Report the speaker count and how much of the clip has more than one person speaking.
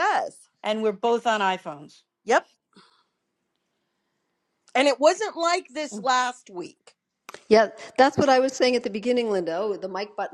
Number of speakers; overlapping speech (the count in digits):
3, no overlap